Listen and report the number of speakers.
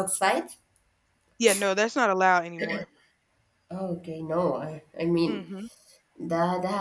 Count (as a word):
two